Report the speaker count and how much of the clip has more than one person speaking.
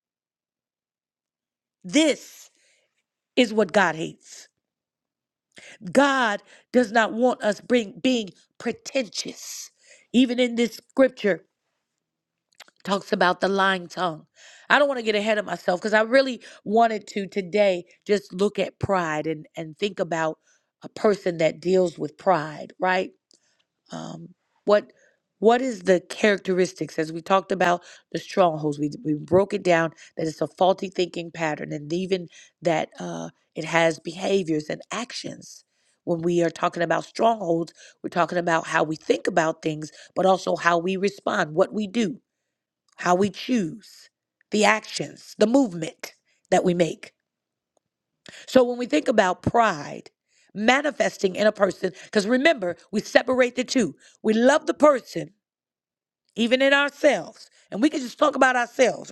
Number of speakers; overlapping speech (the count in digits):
1, no overlap